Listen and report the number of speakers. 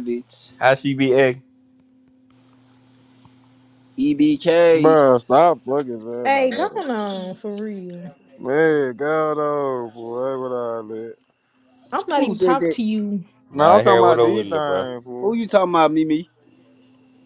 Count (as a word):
four